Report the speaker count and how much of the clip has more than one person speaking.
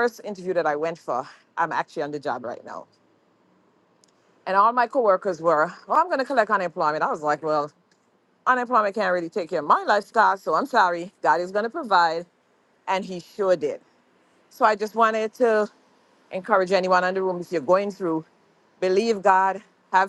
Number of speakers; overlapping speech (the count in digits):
1, no overlap